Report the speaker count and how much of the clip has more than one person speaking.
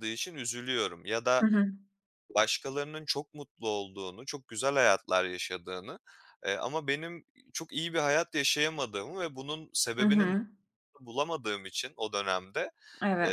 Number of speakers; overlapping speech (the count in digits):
2, about 4%